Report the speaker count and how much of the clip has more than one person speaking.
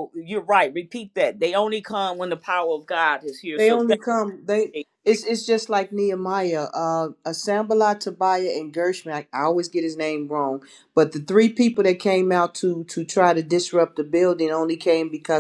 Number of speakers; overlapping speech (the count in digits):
2, about 3%